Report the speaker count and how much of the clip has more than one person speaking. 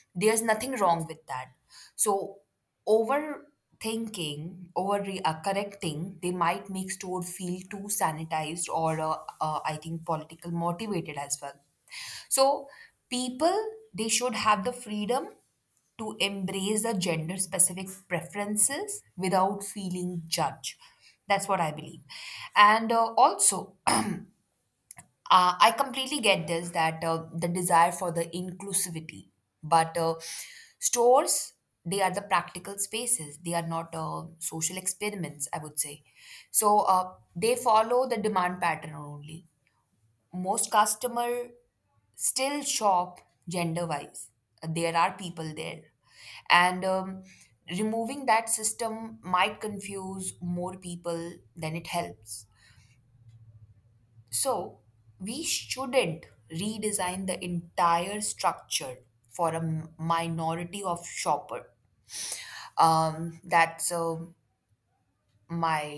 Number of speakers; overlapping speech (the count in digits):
1, no overlap